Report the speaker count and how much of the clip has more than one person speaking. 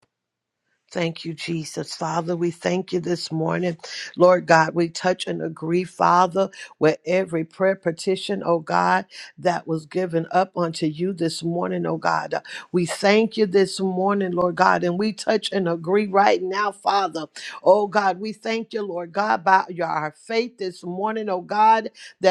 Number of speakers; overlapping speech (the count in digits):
1, no overlap